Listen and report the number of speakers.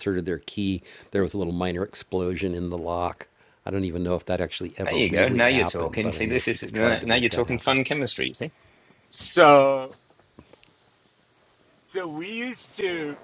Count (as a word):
three